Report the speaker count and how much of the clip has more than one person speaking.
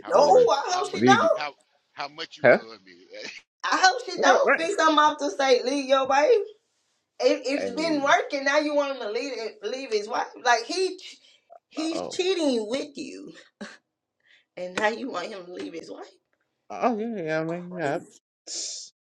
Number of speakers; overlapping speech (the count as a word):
three, about 13%